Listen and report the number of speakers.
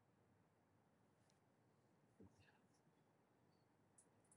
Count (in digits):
0